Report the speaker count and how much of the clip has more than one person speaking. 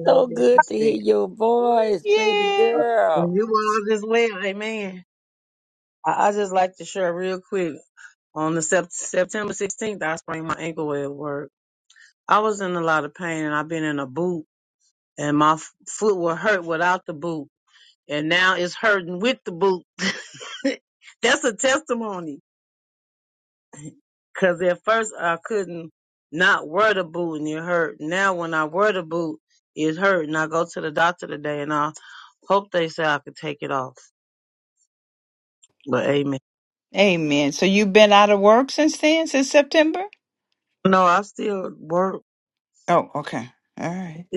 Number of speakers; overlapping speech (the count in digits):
3, about 5%